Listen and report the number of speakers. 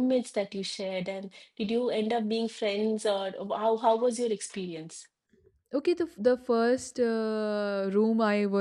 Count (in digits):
2